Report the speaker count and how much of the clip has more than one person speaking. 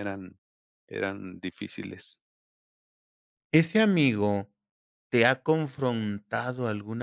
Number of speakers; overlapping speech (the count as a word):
two, no overlap